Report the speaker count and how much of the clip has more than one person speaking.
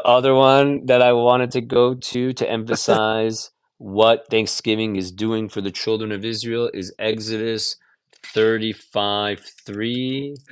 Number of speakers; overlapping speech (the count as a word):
one, no overlap